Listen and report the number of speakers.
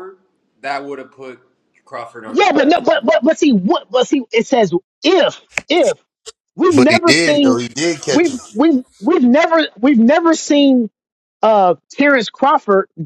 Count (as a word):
three